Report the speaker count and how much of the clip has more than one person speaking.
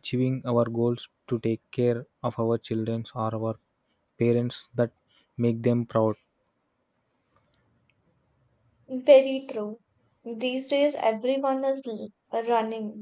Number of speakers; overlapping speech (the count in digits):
2, no overlap